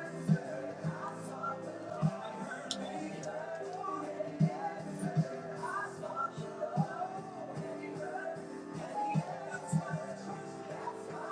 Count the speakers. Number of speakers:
zero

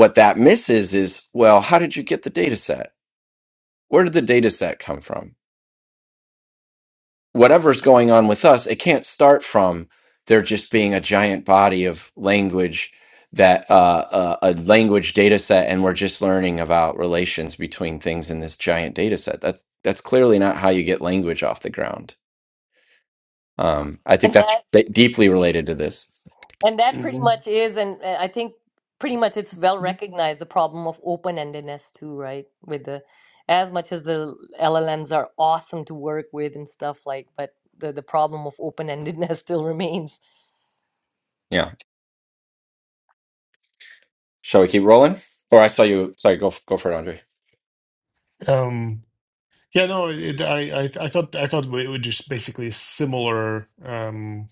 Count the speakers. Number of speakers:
three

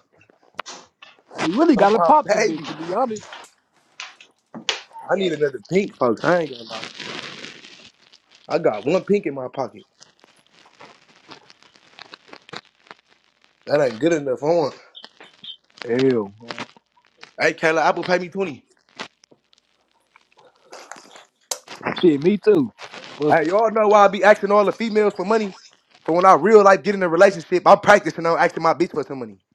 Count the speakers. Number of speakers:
two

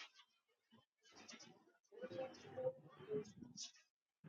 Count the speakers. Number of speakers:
zero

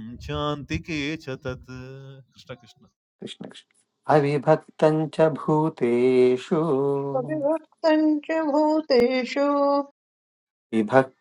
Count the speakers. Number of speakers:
three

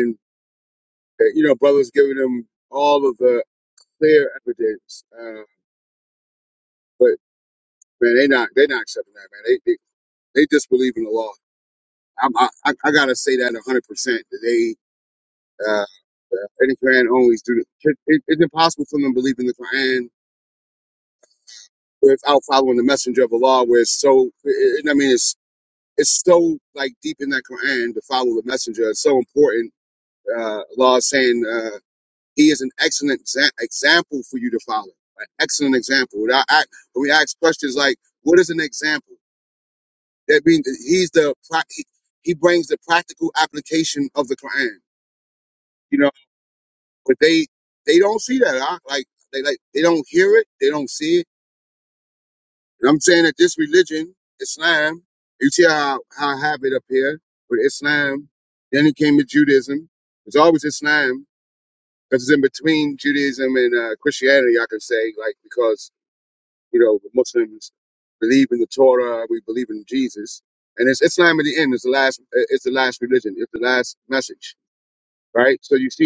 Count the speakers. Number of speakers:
one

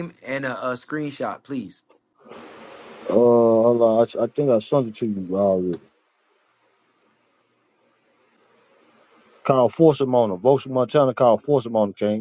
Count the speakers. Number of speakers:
two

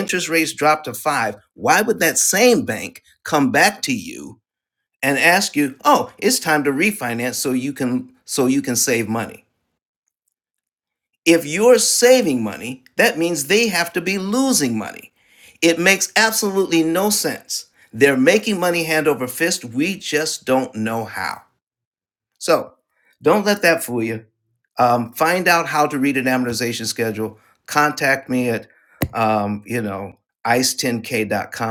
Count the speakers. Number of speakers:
one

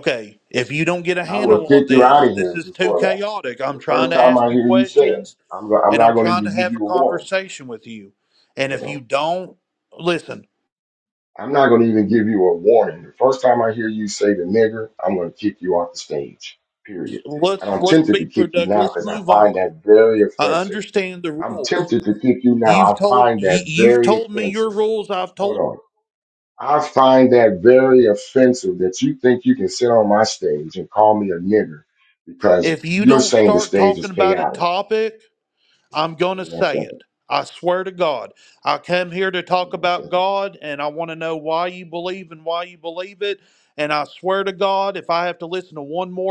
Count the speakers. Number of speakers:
two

